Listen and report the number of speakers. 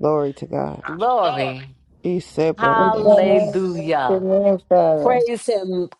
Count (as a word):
three